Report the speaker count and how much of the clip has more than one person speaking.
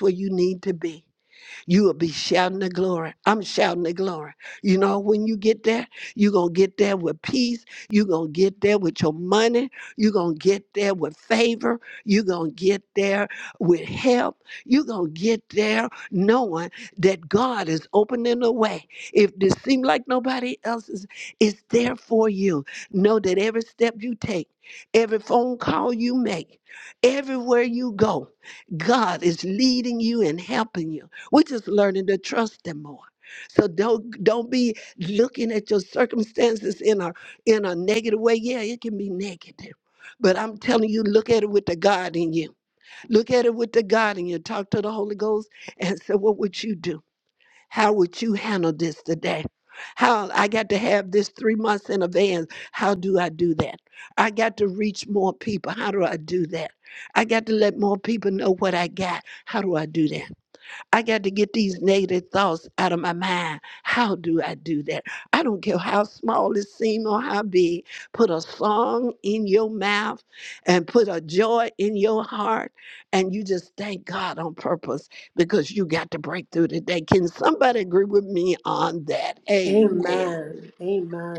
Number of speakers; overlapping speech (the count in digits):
2, about 1%